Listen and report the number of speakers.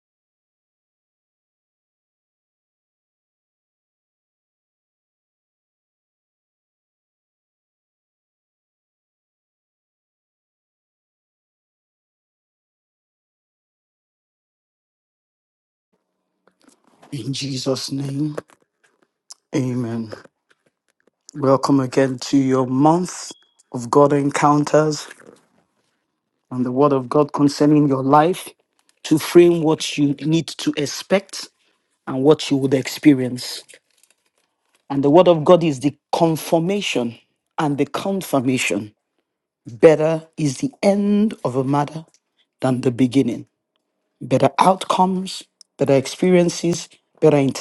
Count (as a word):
one